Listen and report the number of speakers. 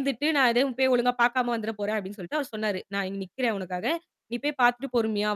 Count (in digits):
1